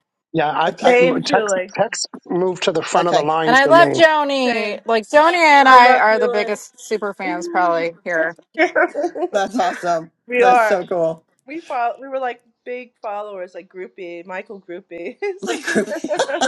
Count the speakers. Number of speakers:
four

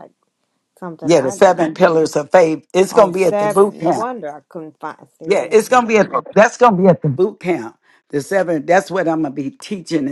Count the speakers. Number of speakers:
two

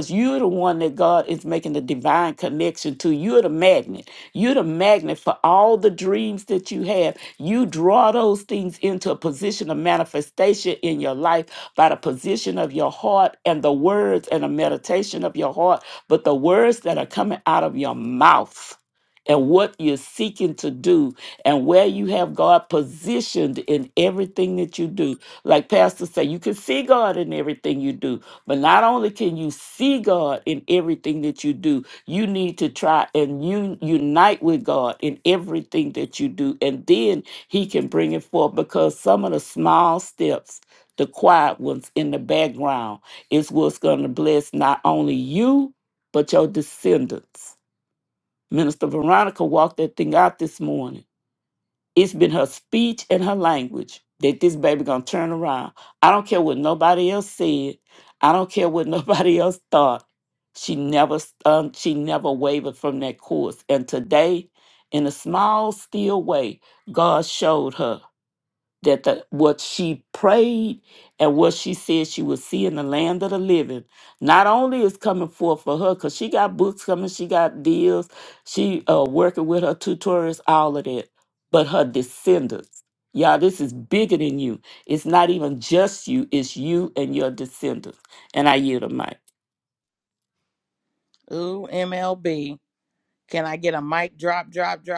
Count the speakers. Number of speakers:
two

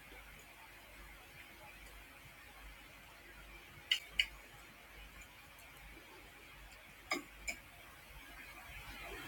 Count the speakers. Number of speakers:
zero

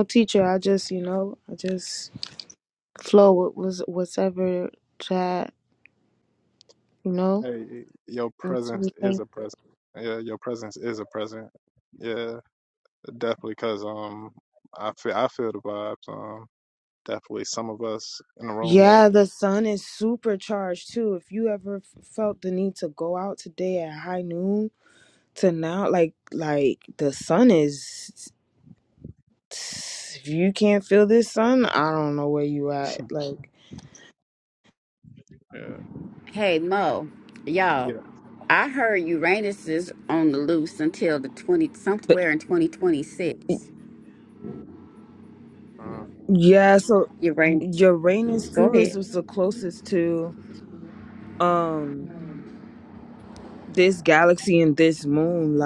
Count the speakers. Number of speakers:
three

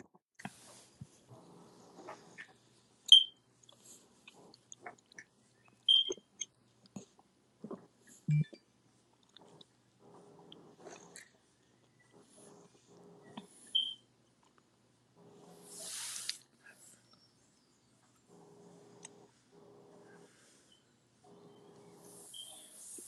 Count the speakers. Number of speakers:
zero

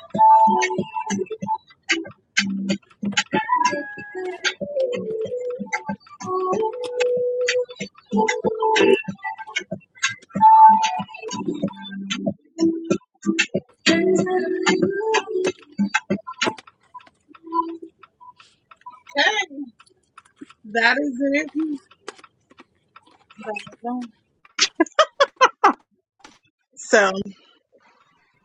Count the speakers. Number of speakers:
one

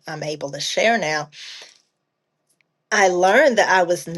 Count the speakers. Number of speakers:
one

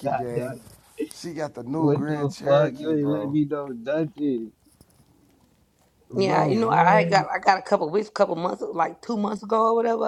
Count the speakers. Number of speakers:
three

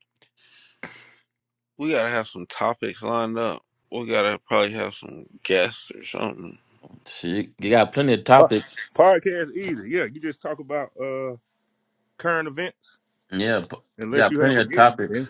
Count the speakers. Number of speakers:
three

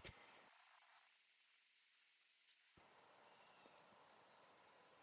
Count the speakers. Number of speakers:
zero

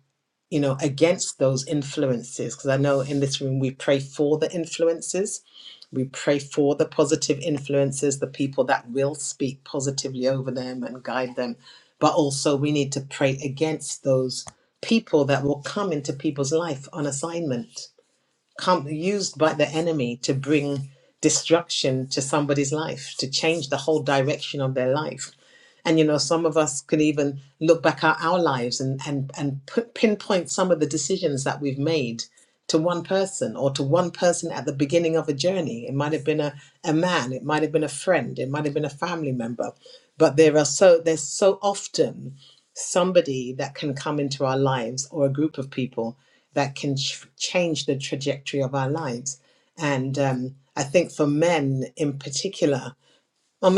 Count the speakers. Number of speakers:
one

